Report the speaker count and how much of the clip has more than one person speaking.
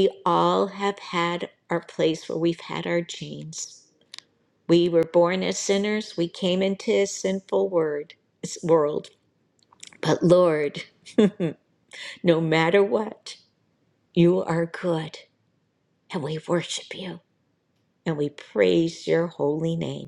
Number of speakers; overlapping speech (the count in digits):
1, no overlap